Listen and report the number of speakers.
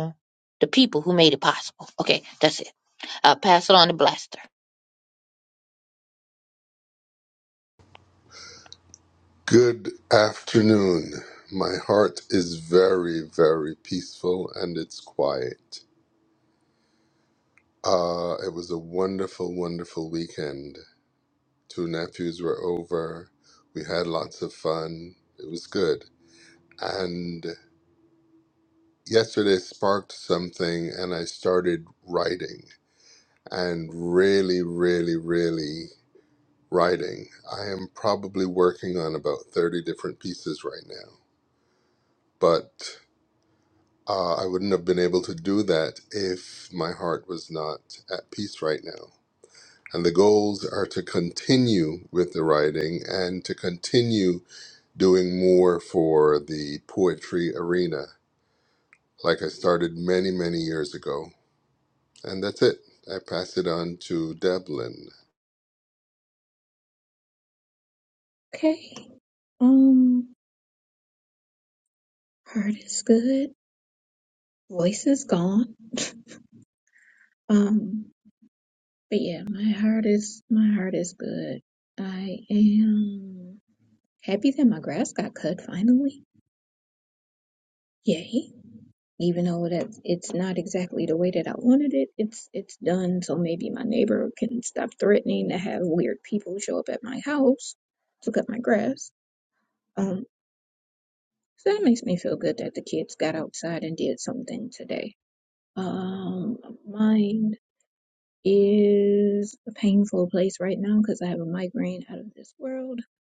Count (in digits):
3